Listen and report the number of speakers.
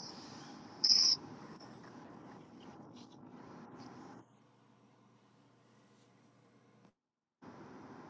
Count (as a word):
zero